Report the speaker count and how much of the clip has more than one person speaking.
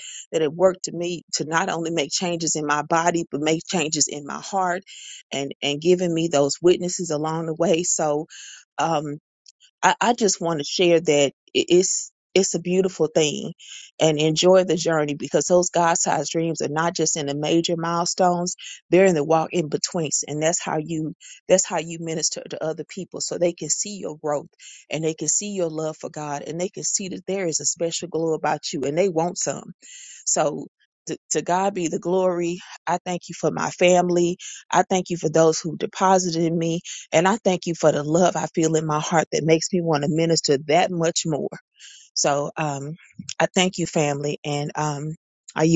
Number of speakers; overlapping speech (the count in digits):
1, no overlap